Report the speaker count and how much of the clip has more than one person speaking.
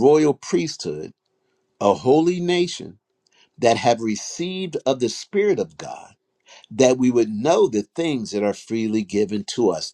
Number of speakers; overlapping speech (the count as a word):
one, no overlap